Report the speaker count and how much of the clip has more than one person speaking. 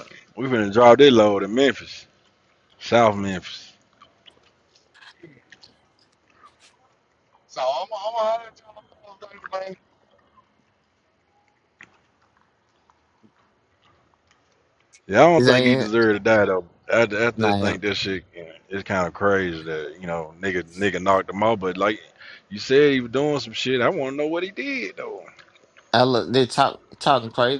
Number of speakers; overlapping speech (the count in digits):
3, about 3%